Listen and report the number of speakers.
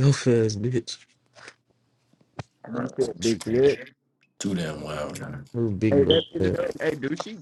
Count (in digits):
3